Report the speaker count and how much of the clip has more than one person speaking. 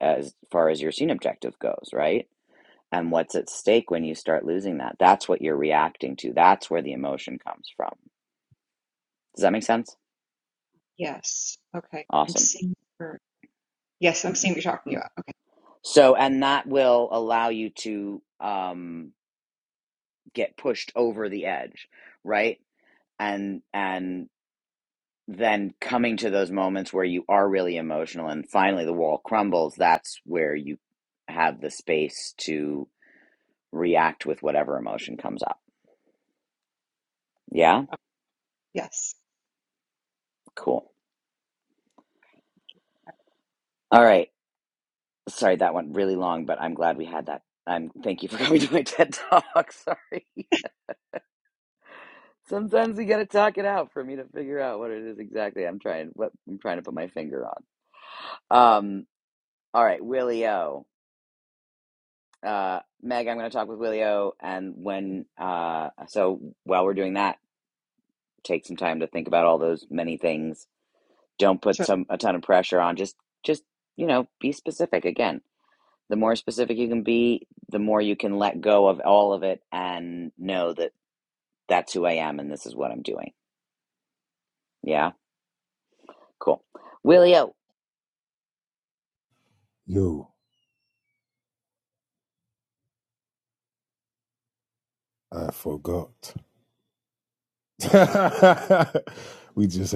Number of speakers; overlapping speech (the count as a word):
three, about 1%